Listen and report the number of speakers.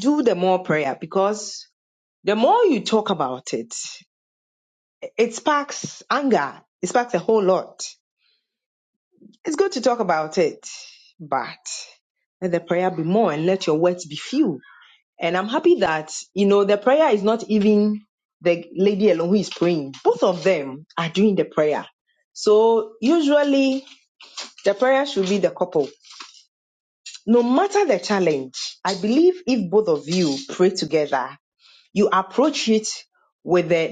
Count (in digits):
1